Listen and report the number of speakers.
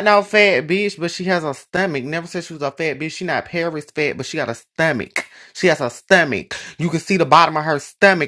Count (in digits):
1